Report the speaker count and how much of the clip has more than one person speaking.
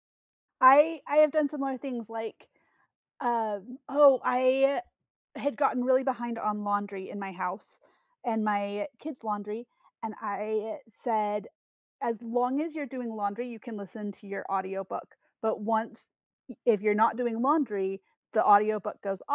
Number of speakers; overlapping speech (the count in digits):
1, no overlap